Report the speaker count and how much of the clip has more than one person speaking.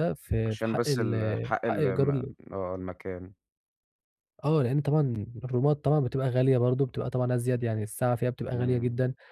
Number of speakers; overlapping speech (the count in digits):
2, about 17%